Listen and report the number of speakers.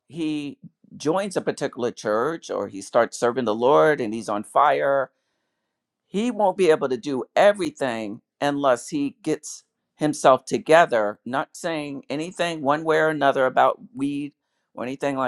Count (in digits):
1